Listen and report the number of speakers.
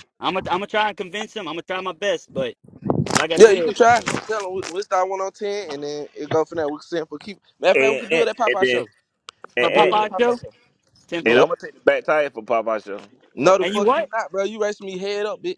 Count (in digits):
3